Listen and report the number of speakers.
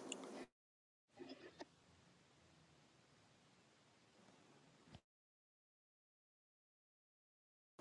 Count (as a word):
zero